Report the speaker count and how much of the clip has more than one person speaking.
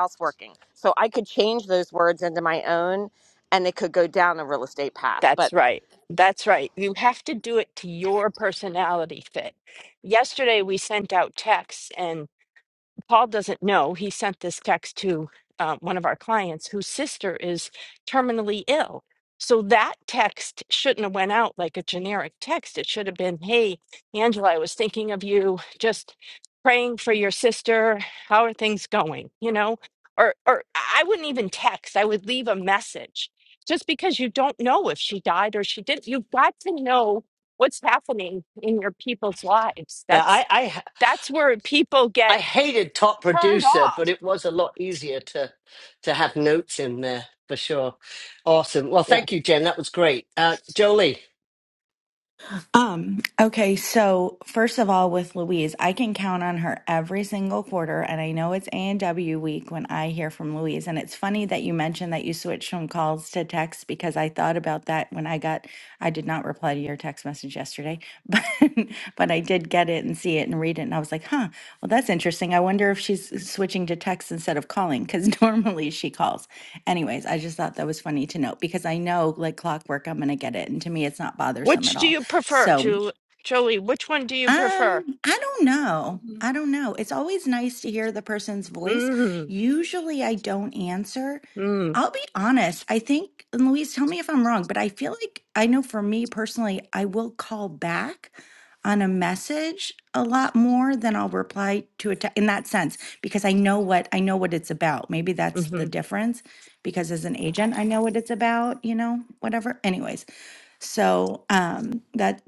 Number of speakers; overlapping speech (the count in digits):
4, about 3%